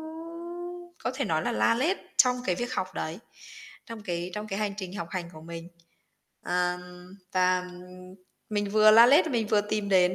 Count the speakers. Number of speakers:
one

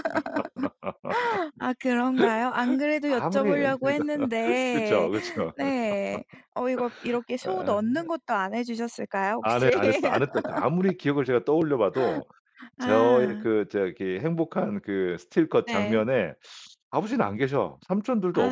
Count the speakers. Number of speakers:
two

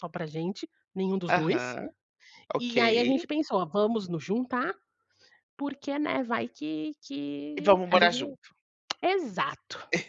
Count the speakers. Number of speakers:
two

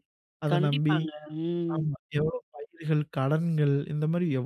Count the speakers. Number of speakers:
two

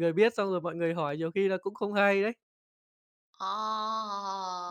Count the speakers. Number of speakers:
two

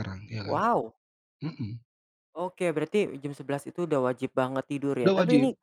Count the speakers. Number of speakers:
two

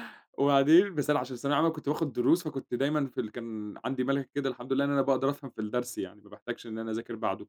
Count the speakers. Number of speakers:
one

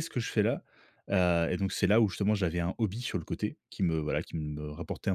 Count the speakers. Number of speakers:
one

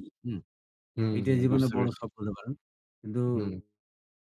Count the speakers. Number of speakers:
two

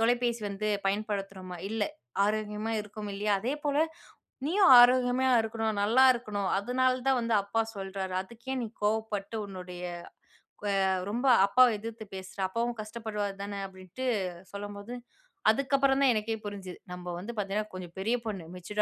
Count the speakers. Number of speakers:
one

